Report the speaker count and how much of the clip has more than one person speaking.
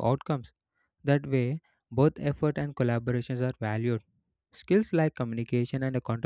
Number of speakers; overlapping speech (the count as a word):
one, no overlap